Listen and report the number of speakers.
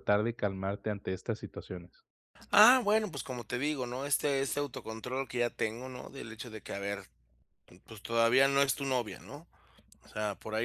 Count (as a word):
two